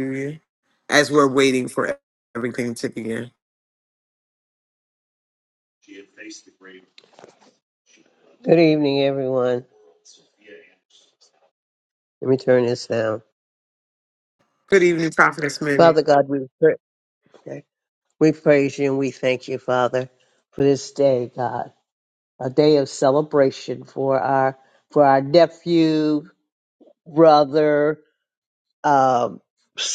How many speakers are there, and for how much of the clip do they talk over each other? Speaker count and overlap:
2, about 1%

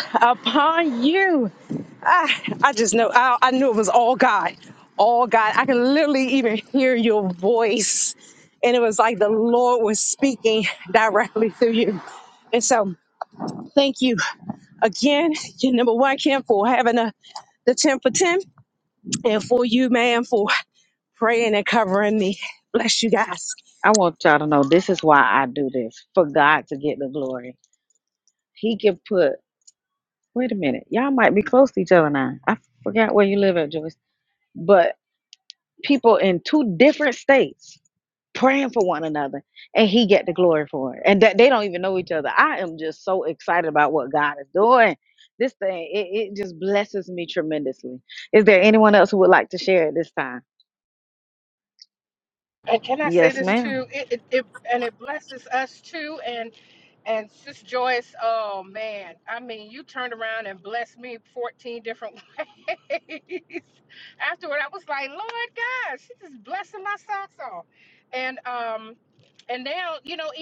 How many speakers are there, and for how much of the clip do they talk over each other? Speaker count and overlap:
3, about 1%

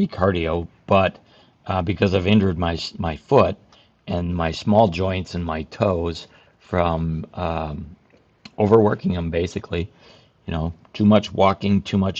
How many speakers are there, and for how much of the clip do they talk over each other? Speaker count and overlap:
1, no overlap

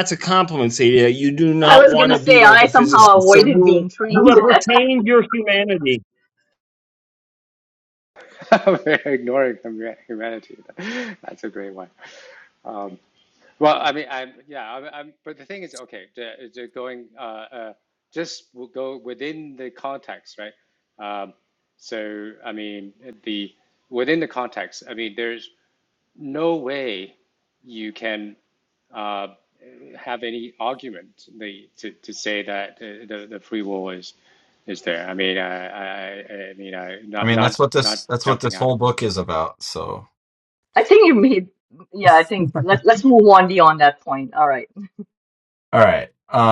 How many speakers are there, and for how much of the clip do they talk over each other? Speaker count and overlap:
4, about 9%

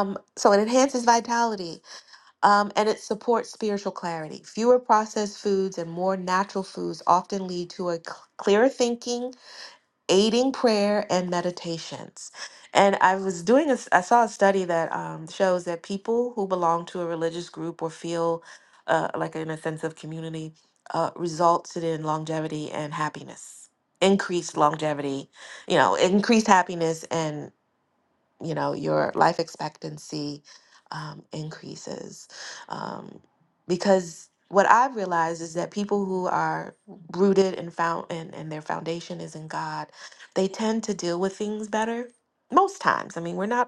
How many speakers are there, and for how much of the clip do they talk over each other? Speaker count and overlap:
1, no overlap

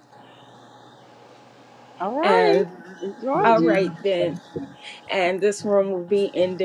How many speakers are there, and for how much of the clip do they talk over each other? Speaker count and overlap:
2, about 12%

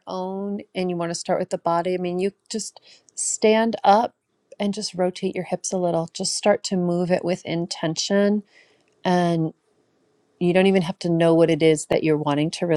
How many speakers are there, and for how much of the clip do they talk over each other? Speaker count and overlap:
1, no overlap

